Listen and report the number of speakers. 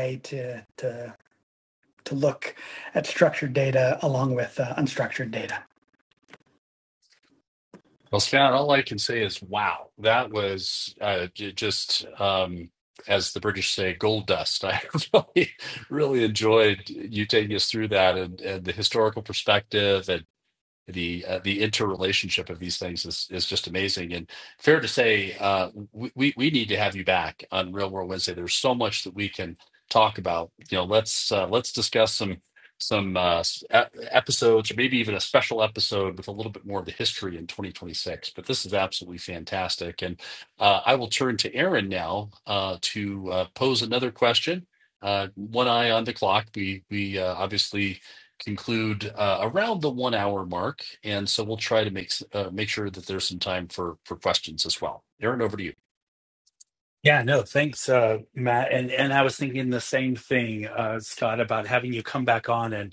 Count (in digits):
3